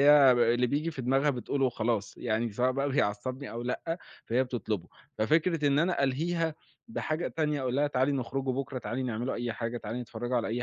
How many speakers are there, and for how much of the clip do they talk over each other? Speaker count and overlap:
1, no overlap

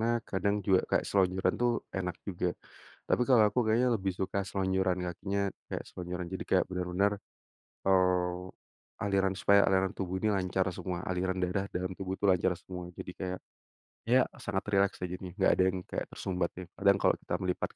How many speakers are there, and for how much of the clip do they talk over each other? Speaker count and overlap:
1, no overlap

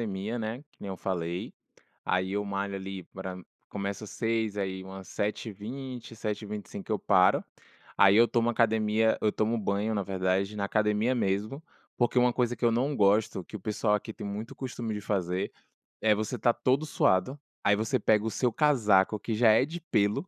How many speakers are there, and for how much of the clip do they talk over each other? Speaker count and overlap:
1, no overlap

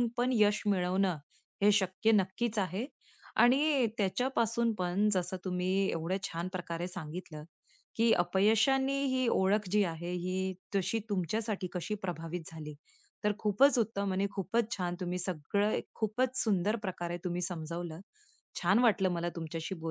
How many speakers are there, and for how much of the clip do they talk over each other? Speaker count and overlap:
1, no overlap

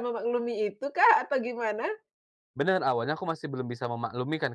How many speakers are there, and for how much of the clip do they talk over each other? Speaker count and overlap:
2, no overlap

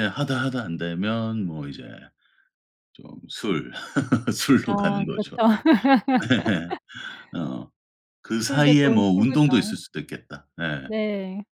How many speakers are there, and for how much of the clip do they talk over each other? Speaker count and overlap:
2, about 17%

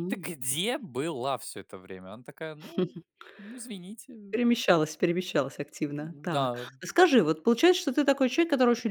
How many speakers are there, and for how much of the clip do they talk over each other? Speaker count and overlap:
2, about 9%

